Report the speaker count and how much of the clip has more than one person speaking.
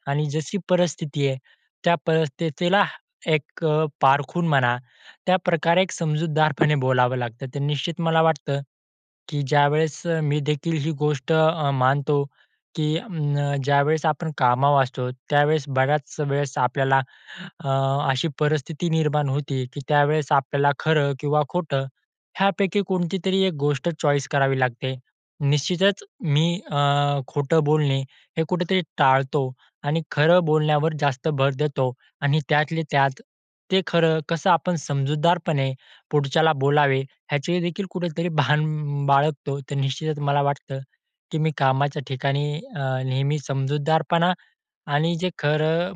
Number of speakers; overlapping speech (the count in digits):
1, no overlap